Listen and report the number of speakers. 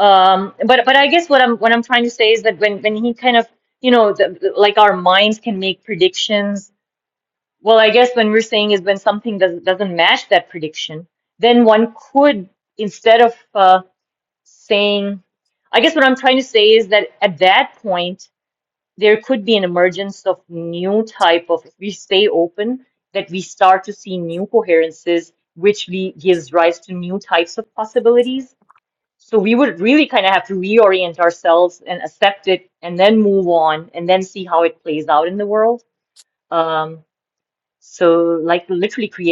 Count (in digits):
1